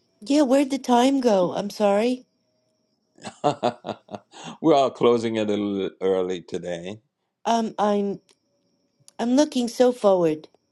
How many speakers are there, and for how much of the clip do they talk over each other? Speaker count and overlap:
2, no overlap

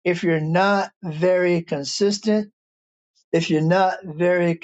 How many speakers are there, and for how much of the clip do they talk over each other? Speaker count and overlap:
1, no overlap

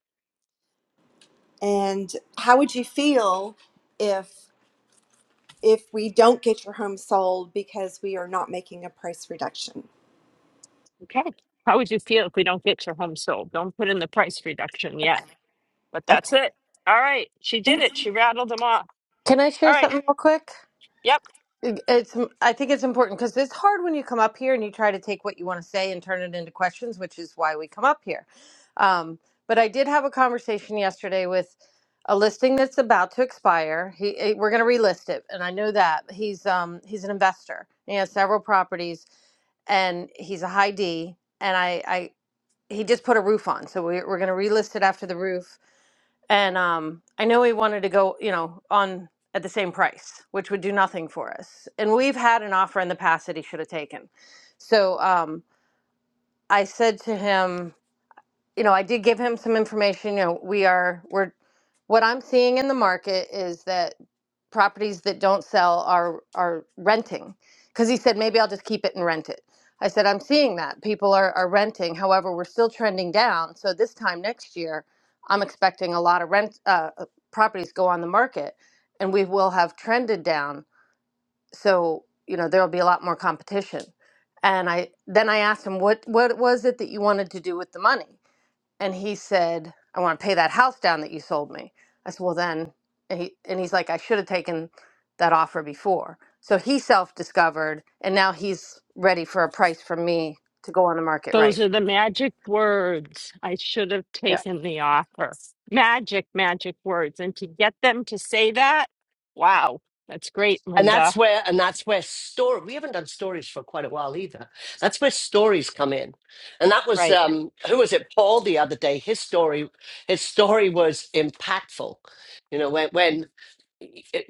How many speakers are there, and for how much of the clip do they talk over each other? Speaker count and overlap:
4, about 1%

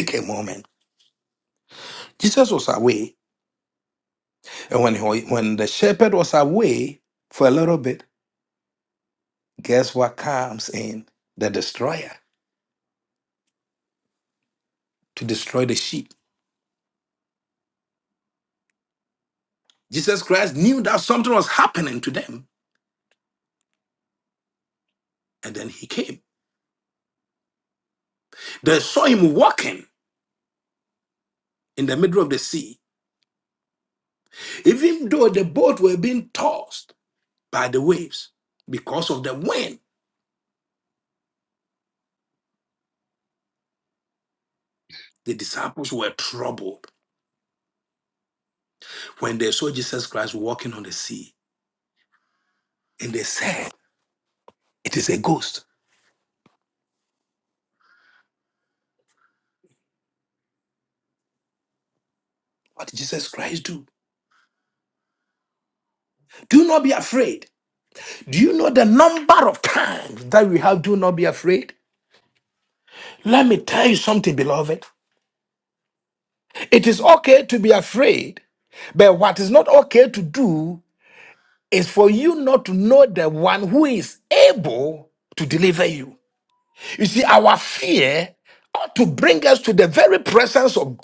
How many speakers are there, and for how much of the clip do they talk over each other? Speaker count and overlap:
1, no overlap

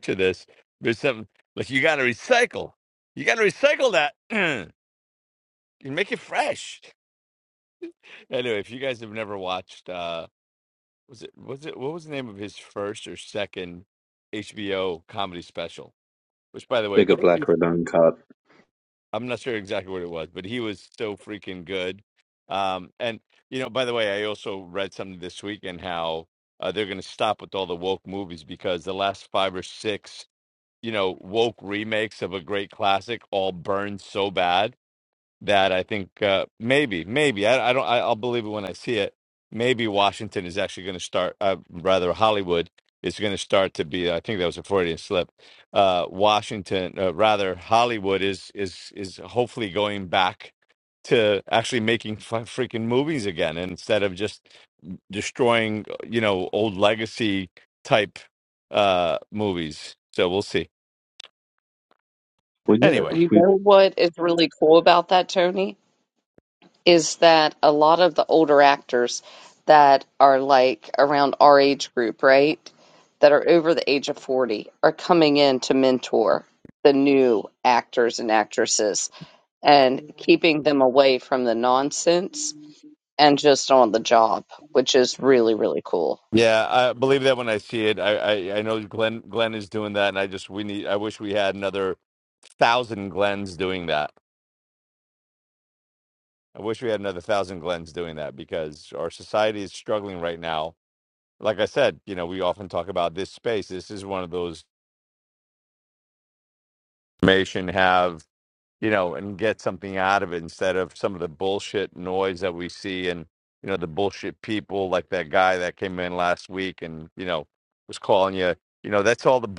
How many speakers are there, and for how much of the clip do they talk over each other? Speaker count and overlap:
3, about 1%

